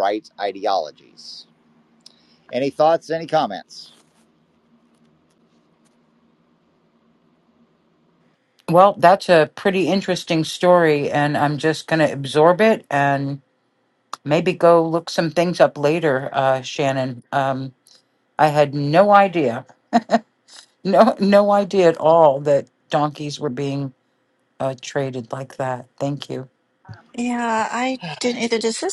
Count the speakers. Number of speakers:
3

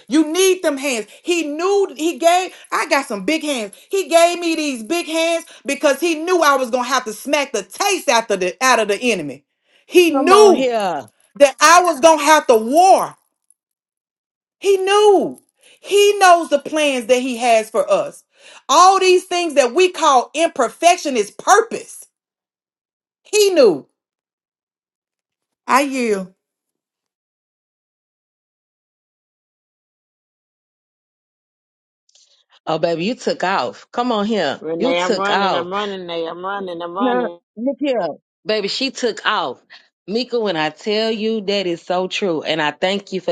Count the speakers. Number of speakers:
3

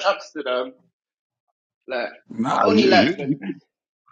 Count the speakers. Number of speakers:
2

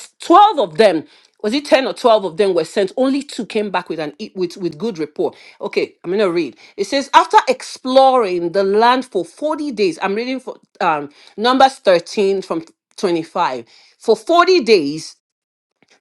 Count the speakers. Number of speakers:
1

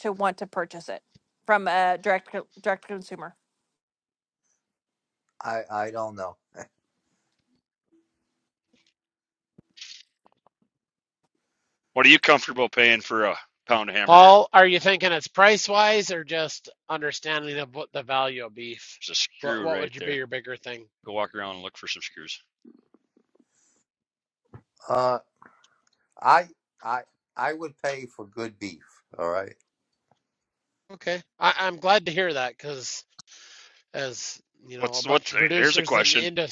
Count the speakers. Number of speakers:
4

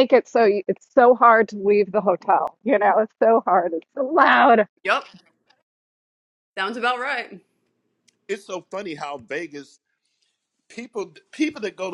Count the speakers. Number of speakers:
3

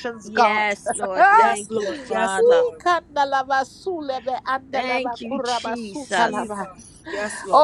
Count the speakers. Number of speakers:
3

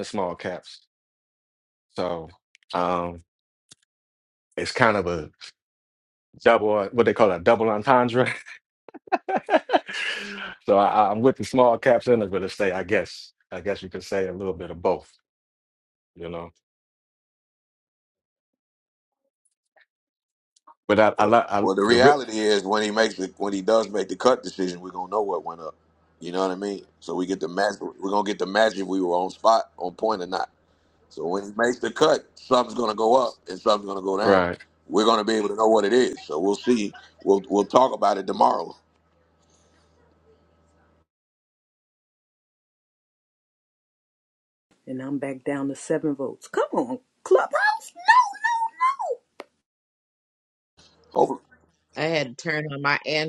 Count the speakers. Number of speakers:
4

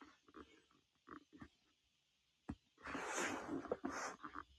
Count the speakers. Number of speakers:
0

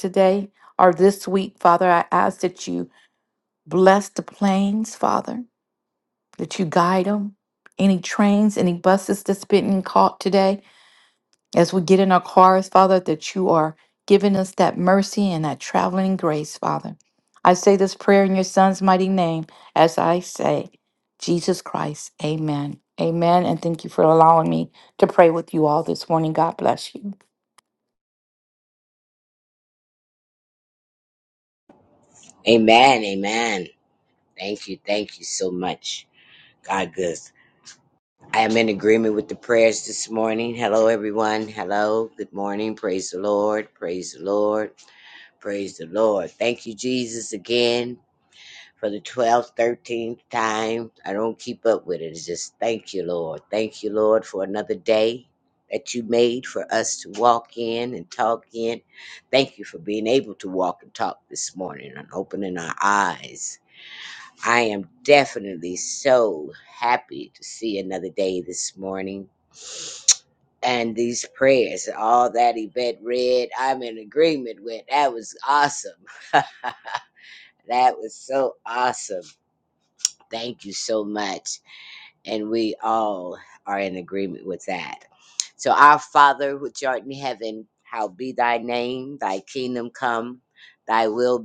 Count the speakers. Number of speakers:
2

